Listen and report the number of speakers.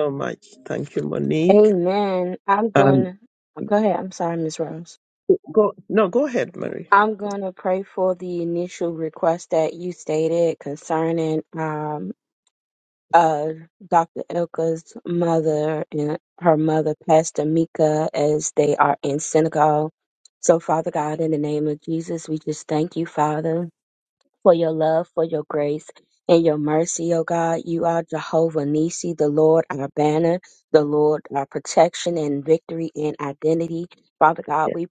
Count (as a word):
two